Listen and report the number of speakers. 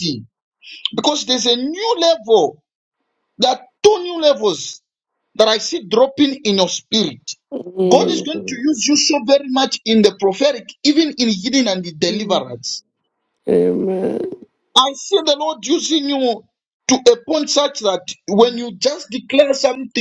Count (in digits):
2